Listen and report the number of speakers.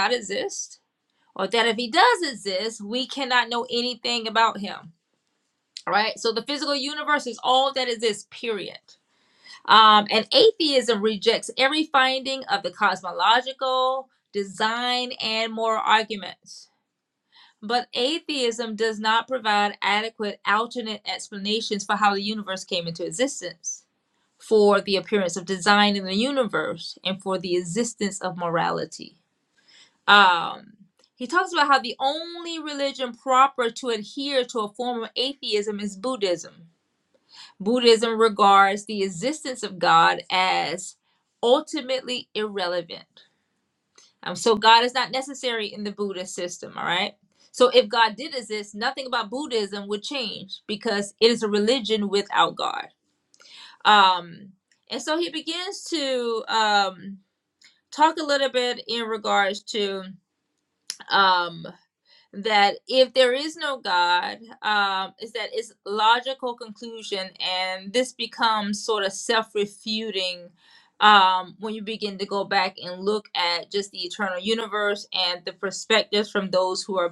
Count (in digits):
1